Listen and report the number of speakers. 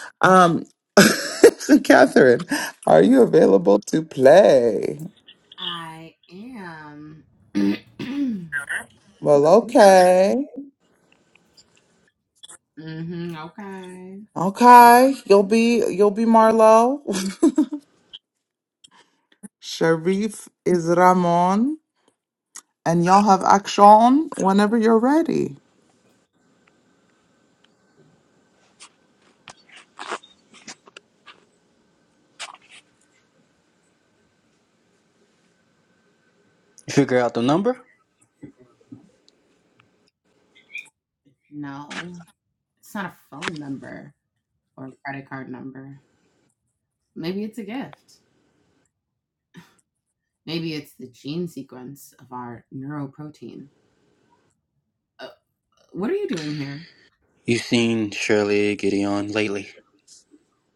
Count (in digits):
3